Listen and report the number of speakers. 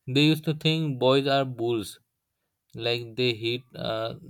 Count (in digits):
1